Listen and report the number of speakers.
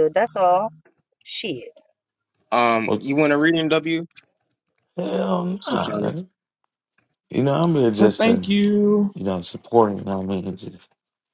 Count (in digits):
4